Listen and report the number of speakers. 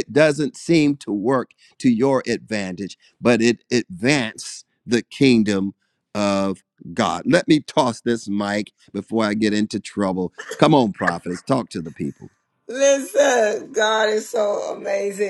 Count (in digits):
2